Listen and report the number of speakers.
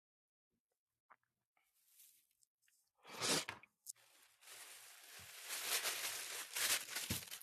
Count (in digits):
0